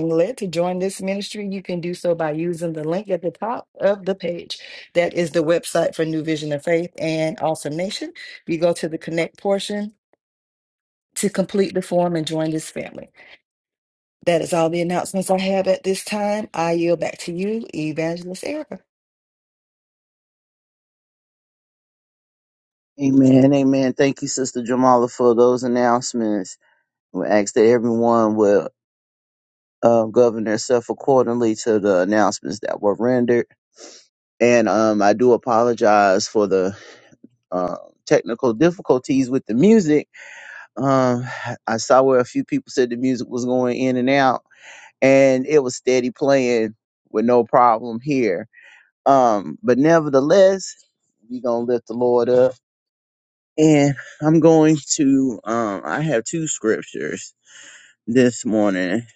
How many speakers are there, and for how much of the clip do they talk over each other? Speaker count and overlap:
two, no overlap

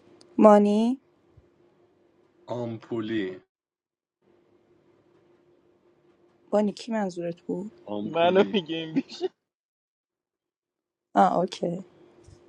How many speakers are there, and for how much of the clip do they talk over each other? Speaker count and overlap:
three, about 4%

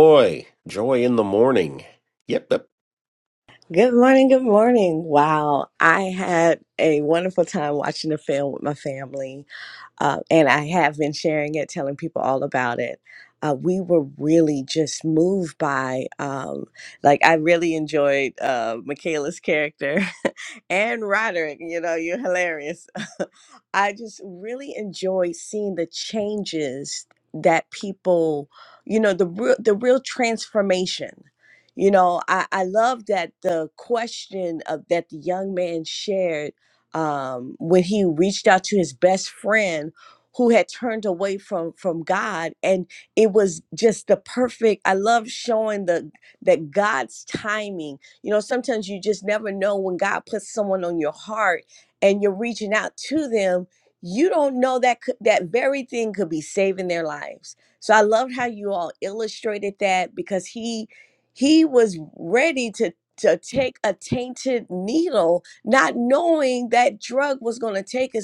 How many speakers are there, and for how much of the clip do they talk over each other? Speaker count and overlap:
two, no overlap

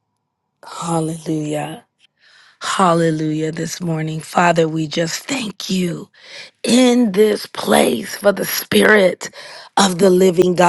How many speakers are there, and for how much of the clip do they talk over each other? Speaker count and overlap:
one, no overlap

